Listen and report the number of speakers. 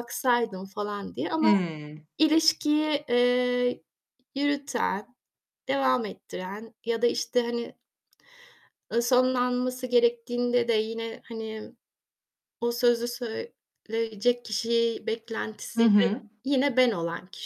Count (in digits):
2